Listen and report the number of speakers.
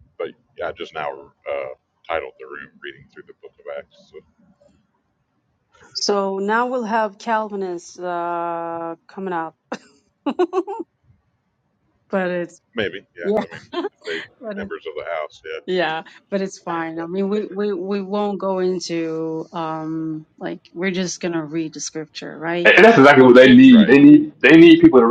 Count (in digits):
3